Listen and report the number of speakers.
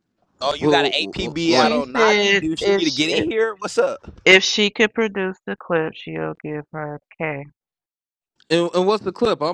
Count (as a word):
three